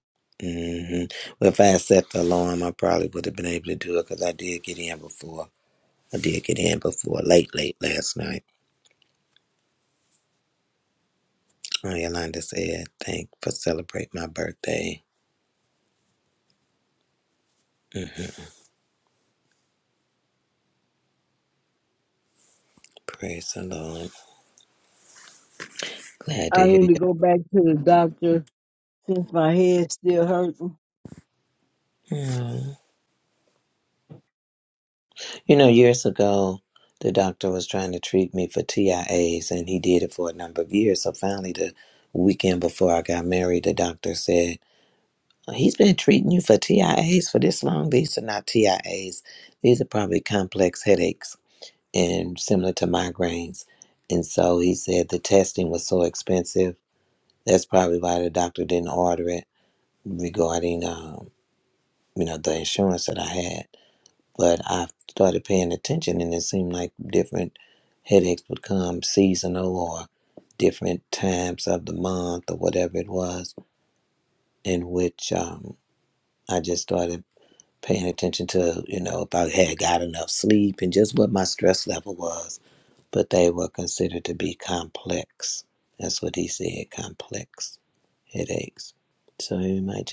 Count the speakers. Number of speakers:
two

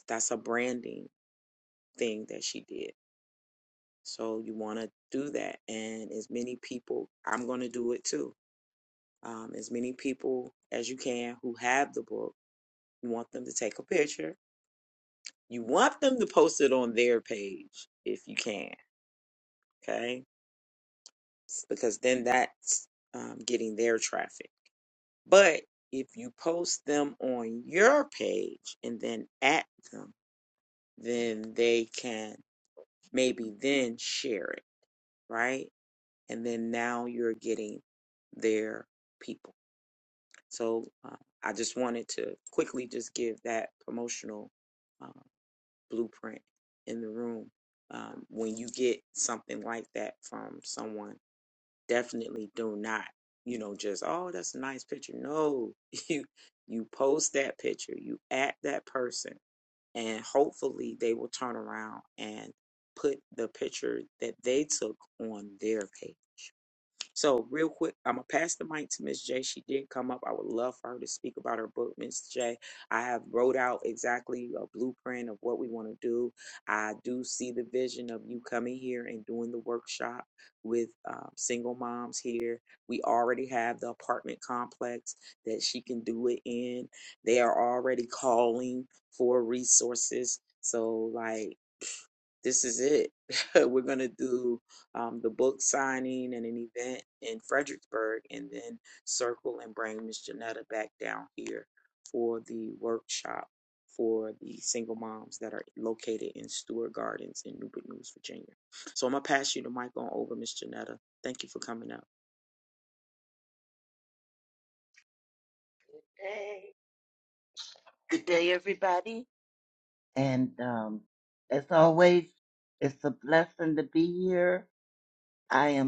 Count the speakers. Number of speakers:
two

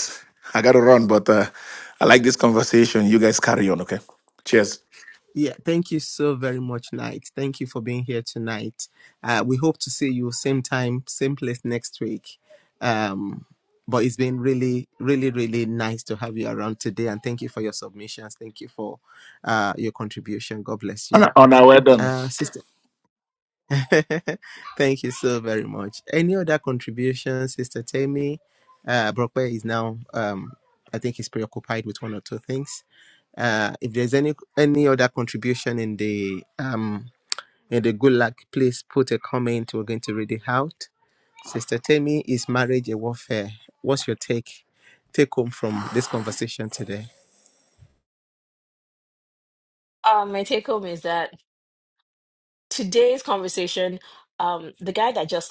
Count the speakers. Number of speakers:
three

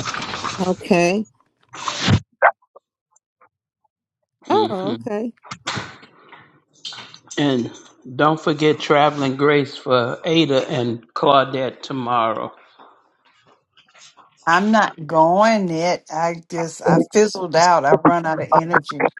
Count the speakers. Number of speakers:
three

